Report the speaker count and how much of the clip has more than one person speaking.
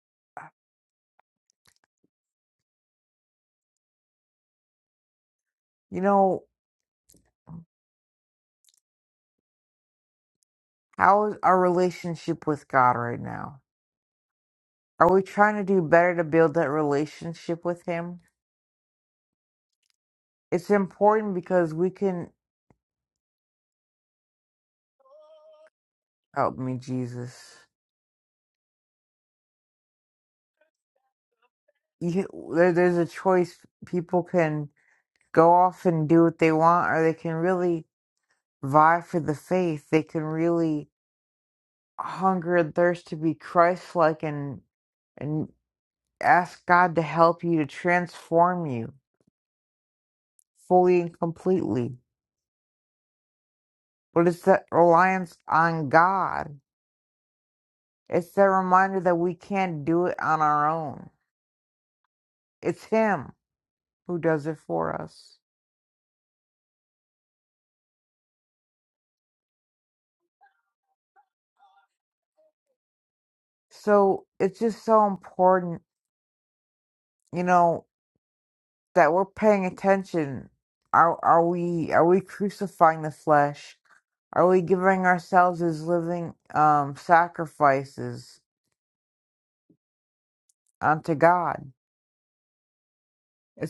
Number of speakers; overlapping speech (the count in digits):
1, no overlap